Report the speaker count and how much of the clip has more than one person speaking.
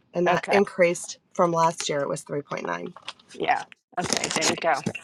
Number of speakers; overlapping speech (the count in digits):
2, about 7%